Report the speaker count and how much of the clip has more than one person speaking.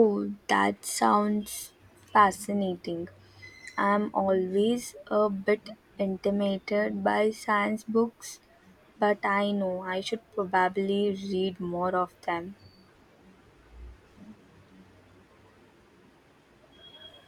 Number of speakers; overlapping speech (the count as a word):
one, no overlap